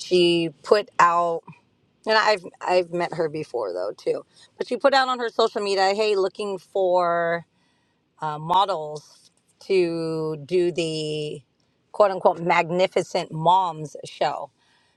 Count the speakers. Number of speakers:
1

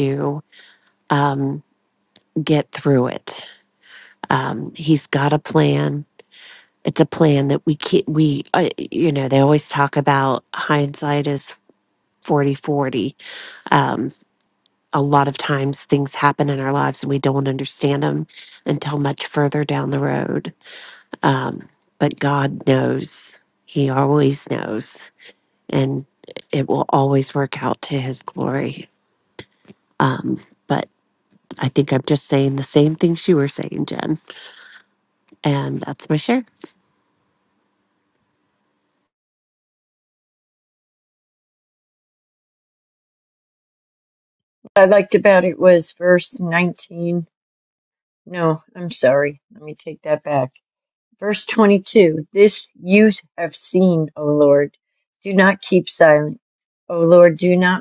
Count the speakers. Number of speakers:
2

